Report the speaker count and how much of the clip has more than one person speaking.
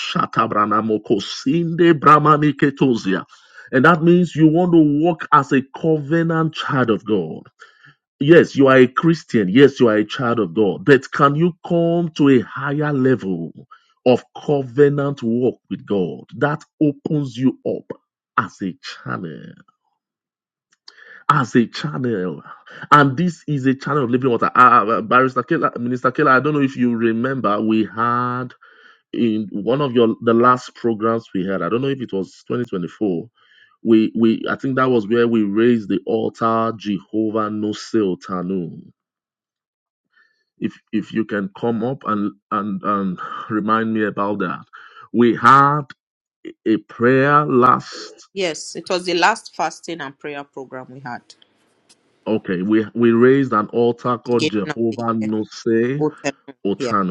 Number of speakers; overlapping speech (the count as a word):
two, about 2%